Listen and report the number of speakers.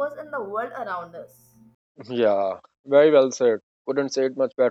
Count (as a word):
two